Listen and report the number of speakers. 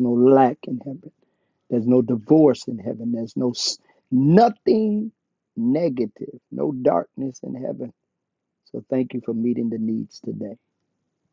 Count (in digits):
1